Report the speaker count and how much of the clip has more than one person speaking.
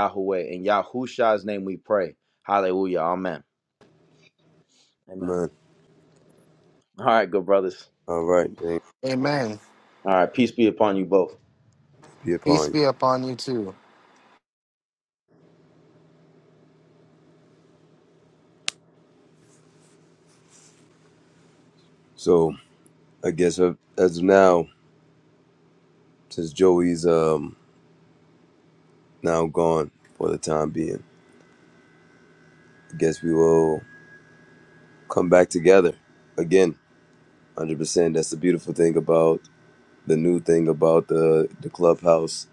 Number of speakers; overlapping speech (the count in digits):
3, about 1%